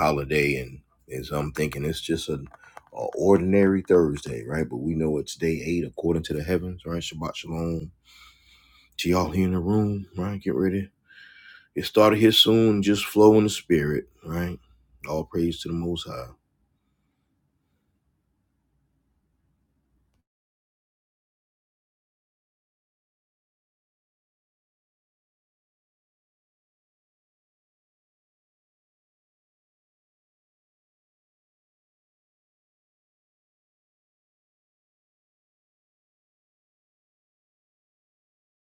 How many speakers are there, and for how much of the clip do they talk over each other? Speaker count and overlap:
one, no overlap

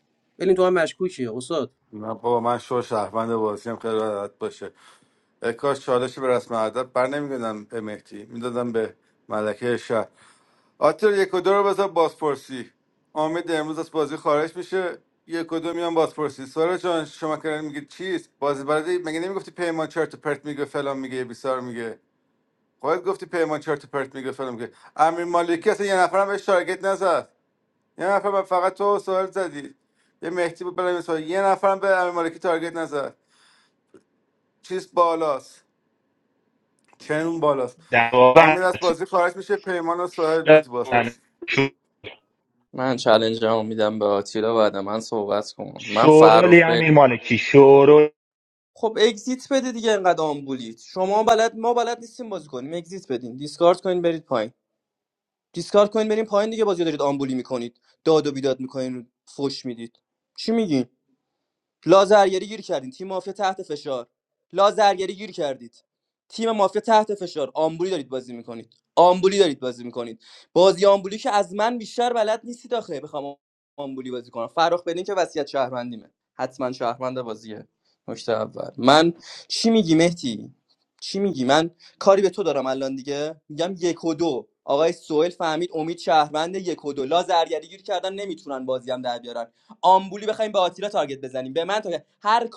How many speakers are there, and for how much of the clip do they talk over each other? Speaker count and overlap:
four, about 1%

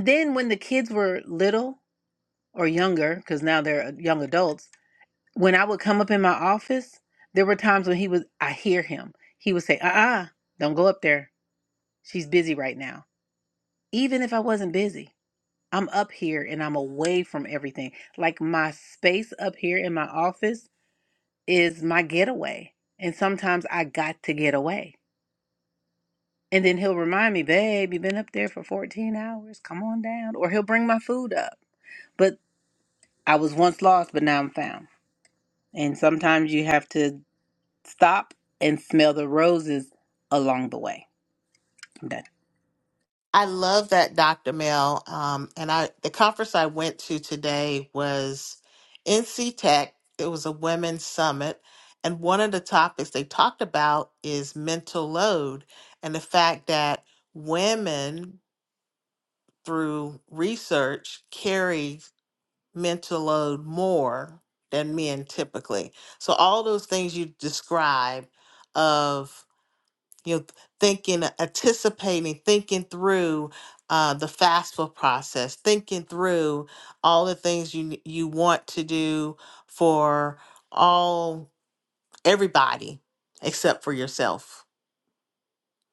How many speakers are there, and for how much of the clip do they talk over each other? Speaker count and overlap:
two, no overlap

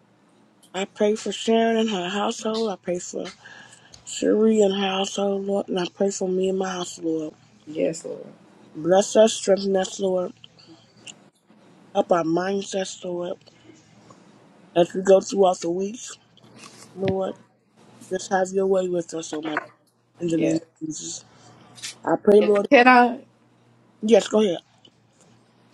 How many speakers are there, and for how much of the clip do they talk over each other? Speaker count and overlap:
two, about 2%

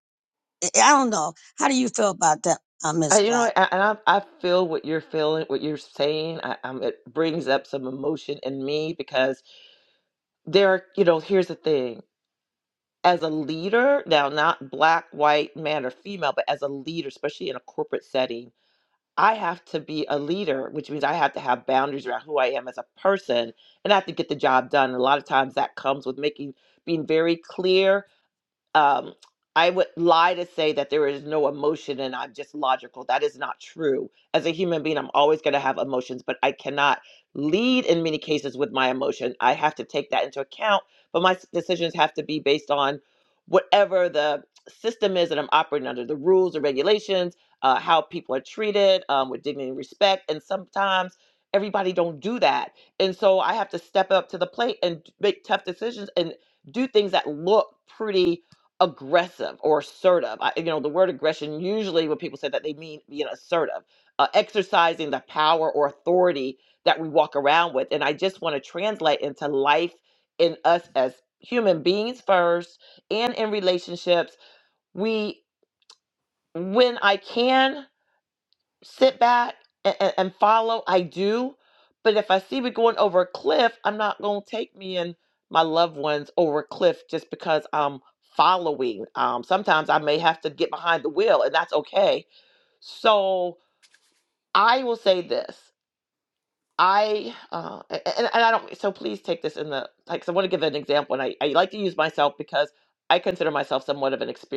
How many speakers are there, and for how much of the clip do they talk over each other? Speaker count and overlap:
two, under 1%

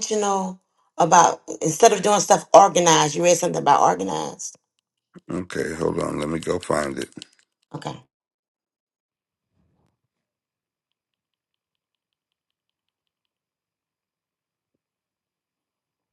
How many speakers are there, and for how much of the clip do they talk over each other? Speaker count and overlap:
two, no overlap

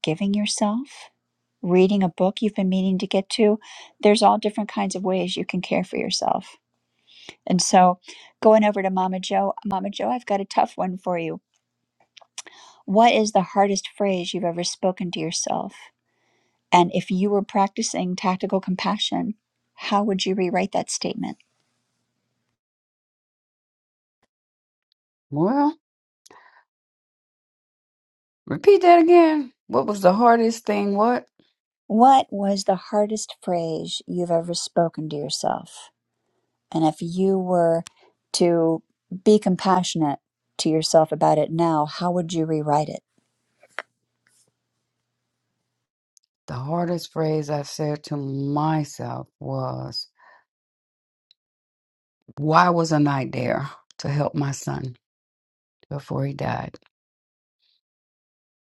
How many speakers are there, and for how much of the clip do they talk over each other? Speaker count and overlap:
two, no overlap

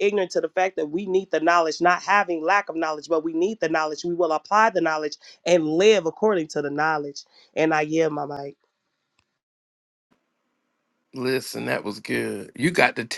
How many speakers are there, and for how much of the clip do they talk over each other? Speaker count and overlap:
two, no overlap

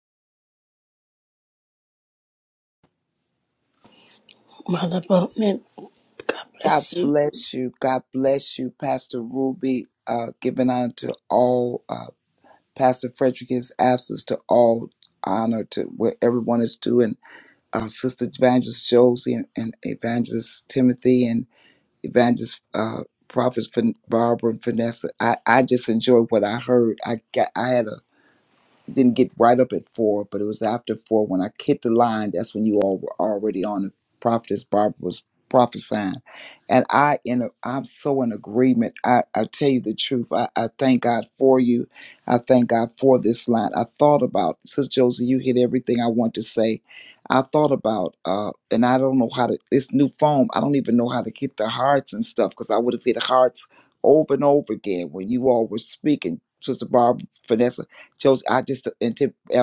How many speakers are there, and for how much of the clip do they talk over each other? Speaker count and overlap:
two, about 1%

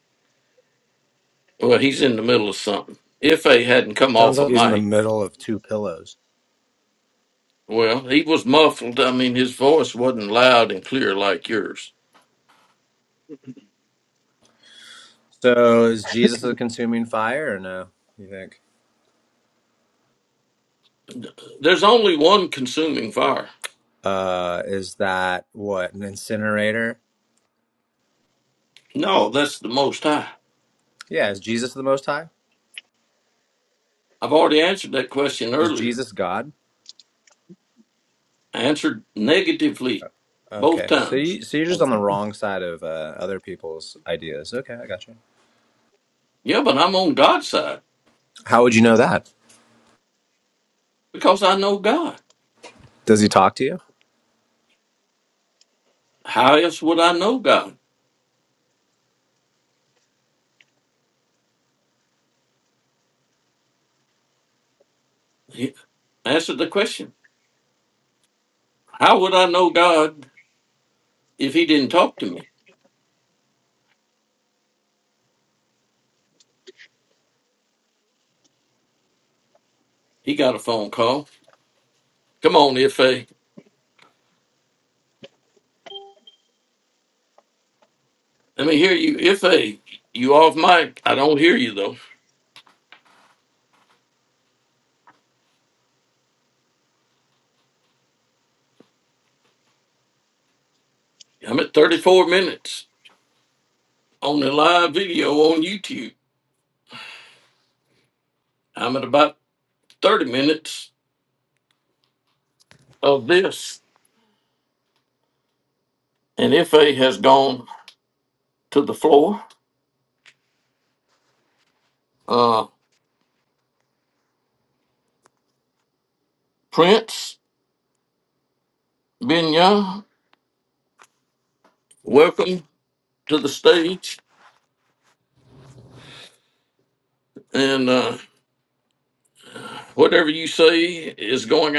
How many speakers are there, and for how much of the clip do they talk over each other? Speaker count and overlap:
two, about 1%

